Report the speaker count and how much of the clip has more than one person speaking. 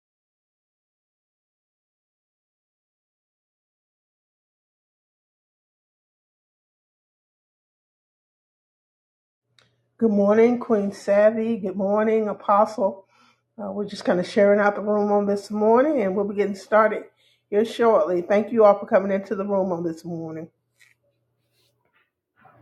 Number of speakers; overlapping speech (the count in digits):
1, no overlap